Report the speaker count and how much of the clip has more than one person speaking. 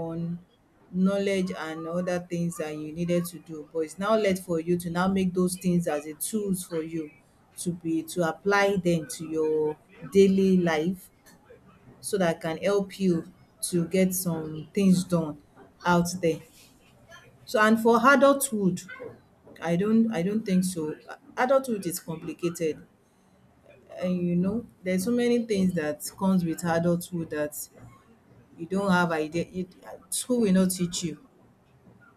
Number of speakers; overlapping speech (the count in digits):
1, no overlap